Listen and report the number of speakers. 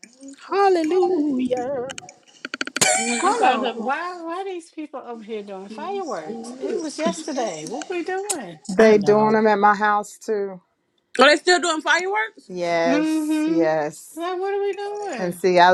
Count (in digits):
4